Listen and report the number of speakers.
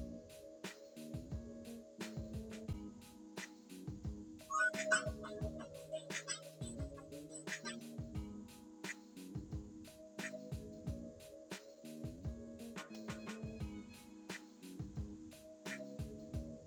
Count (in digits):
0